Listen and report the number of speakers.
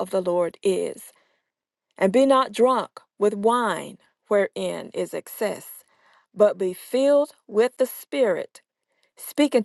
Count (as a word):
one